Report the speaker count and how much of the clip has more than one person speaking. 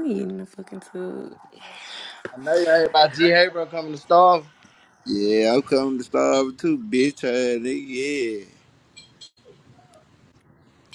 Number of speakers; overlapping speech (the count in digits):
3, no overlap